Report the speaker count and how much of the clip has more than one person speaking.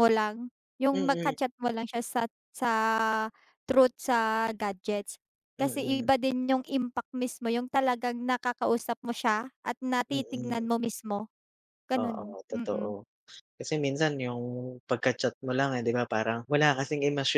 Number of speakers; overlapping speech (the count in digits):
2, about 14%